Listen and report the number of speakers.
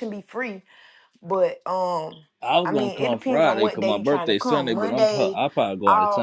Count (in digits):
2